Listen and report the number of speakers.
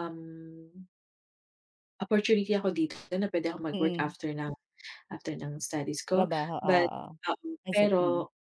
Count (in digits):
2